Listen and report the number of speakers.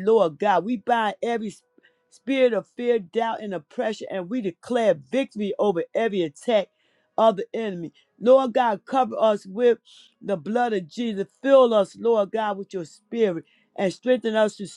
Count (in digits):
1